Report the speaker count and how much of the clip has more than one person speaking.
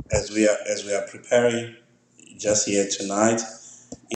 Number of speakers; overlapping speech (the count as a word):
one, no overlap